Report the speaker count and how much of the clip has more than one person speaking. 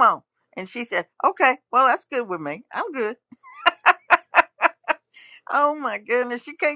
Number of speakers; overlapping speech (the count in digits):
1, no overlap